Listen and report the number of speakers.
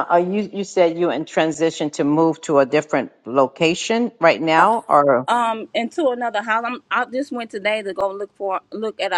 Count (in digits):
2